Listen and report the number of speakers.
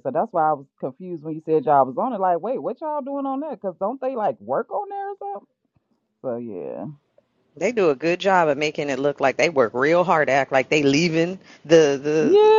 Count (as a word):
two